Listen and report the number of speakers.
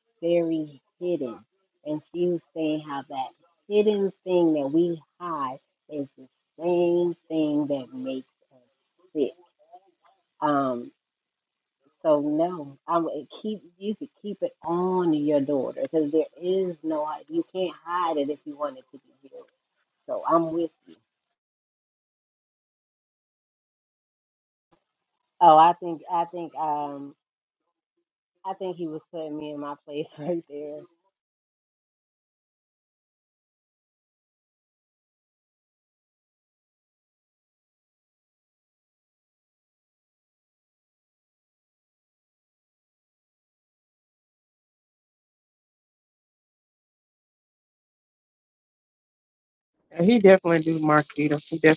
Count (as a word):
two